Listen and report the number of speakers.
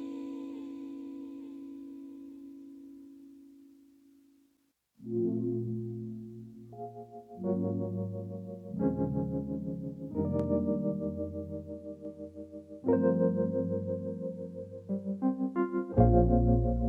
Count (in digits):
0